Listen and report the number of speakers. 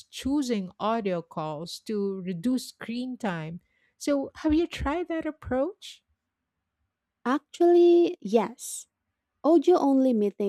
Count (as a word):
two